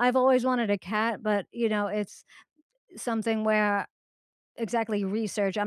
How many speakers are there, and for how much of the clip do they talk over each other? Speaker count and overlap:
one, no overlap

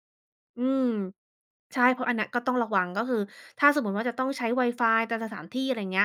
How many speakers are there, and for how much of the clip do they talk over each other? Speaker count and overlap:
one, no overlap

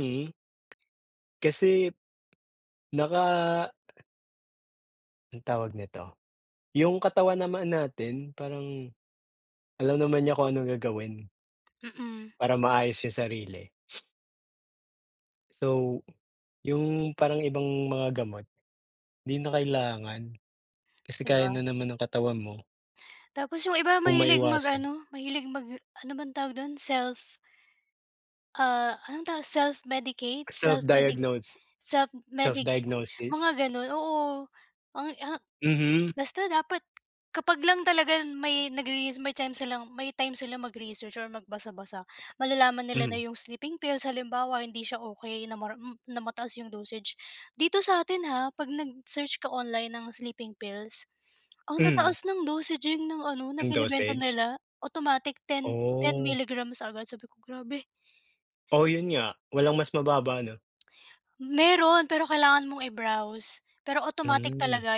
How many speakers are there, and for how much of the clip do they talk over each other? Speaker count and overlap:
two, about 7%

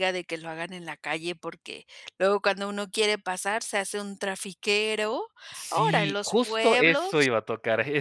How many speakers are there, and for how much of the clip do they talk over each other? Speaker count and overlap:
two, about 19%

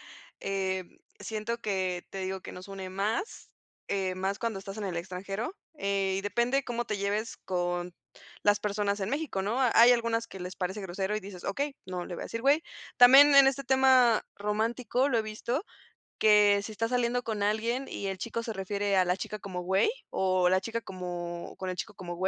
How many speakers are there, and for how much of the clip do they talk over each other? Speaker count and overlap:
one, no overlap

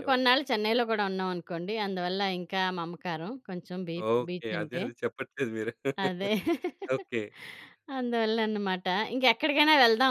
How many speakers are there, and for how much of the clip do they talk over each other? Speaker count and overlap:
two, about 12%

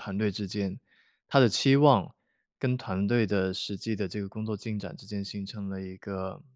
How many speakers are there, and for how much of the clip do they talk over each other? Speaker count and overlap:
one, no overlap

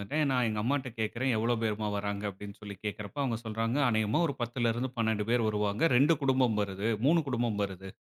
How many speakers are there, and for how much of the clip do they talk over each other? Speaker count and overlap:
one, no overlap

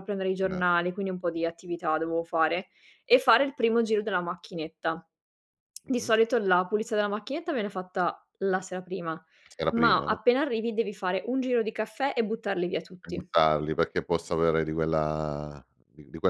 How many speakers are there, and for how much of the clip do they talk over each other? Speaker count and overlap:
two, about 7%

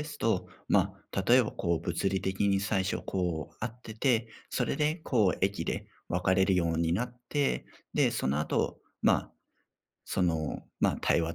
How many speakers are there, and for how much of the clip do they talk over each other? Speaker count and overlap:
one, no overlap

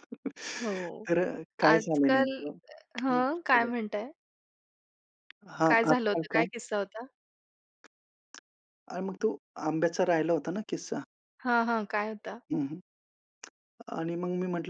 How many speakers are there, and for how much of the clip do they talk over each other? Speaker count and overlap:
two, about 14%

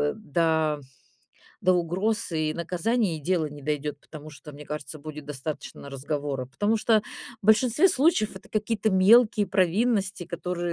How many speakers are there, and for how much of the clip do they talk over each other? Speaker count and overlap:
one, no overlap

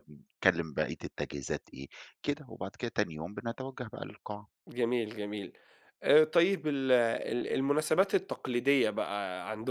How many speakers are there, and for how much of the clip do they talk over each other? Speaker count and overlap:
two, no overlap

